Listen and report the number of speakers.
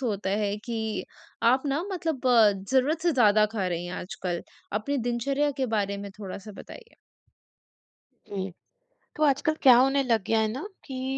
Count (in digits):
2